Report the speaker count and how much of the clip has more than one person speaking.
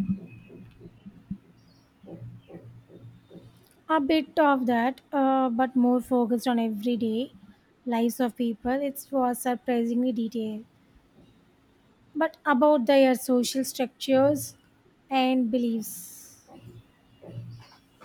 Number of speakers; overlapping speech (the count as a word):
one, no overlap